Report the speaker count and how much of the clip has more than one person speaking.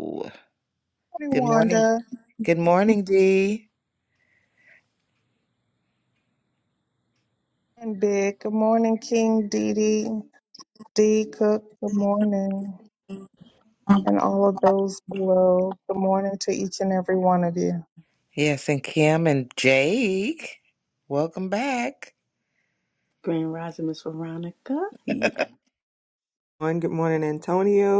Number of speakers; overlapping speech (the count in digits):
4, about 2%